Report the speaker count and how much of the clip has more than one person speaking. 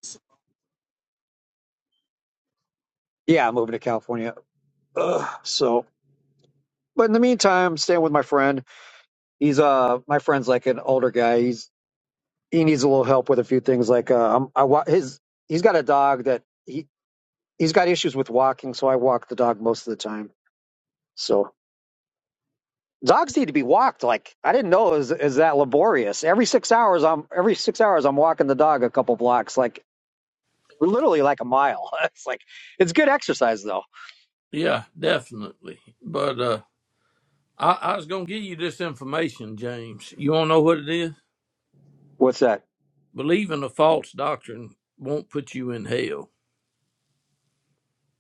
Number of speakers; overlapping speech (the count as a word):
two, no overlap